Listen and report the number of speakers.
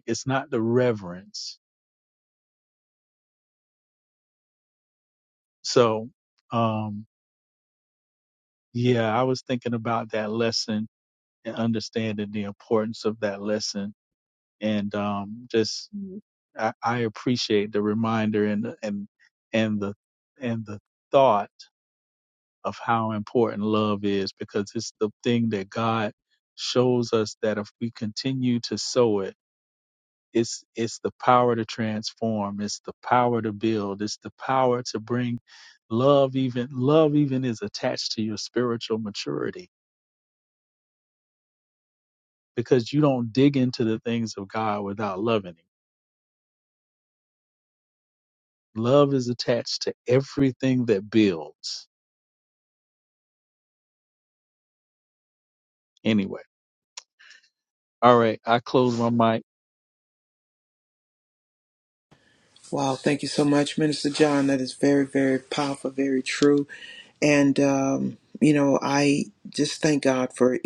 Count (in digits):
2